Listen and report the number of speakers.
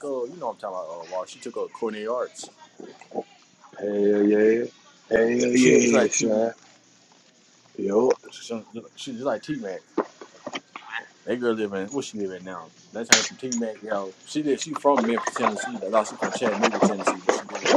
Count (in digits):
2